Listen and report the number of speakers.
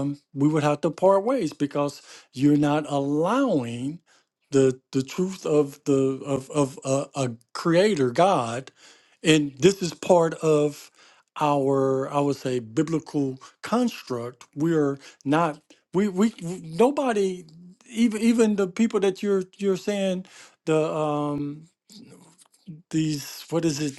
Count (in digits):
1